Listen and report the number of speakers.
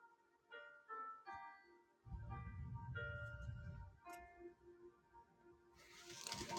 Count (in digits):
0